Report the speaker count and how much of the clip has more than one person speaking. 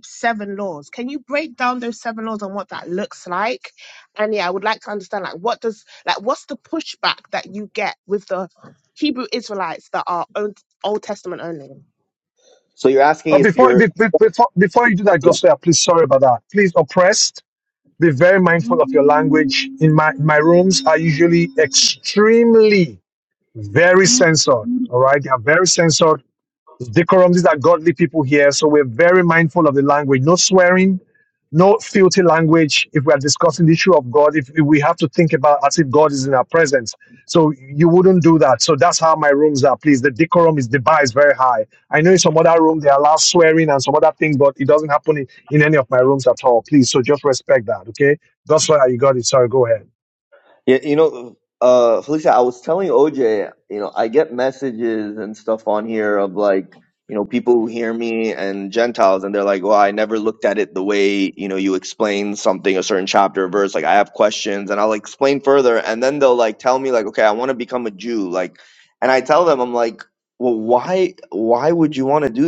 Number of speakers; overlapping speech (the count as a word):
three, about 1%